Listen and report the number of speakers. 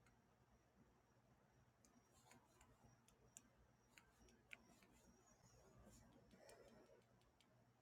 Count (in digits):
0